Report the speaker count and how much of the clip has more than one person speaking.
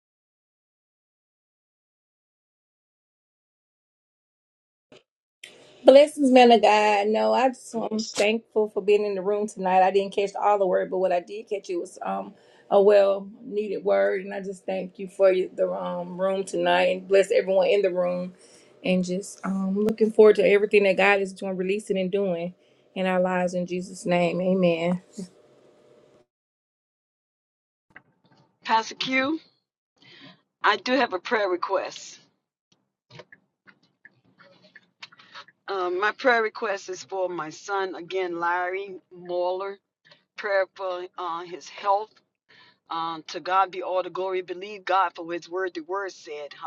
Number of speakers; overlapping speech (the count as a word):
two, no overlap